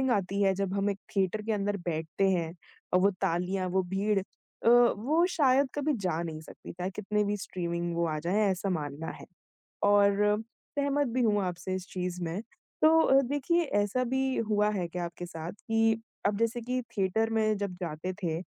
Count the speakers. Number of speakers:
1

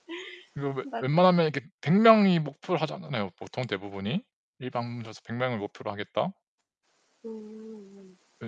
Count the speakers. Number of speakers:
2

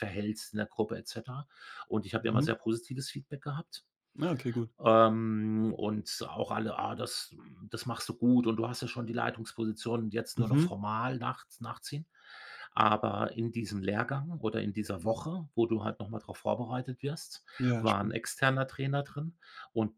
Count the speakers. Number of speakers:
2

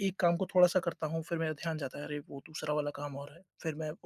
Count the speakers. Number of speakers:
1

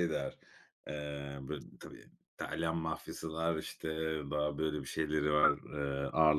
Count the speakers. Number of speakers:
1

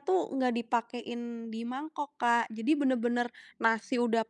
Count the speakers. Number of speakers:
1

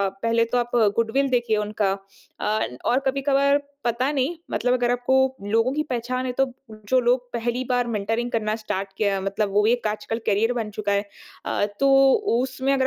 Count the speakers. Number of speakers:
1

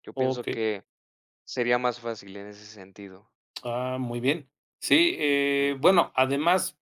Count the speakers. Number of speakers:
2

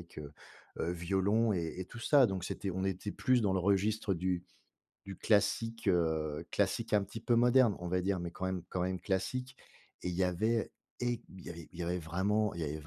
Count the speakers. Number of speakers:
1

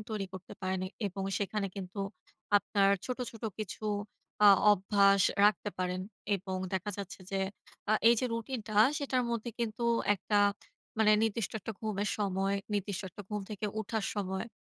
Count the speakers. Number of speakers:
1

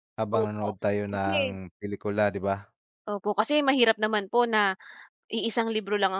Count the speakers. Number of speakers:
2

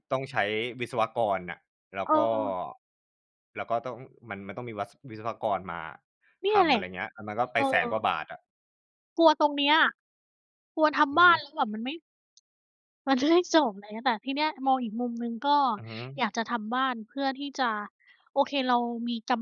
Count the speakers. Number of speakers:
2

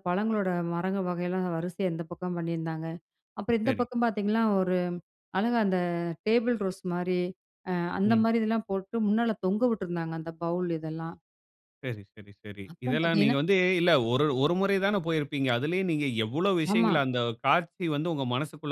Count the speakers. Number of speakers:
2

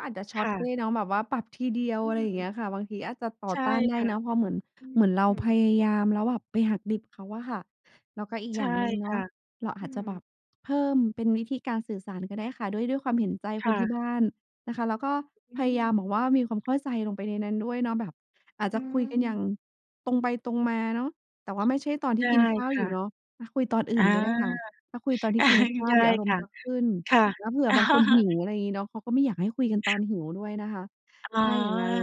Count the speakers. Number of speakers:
2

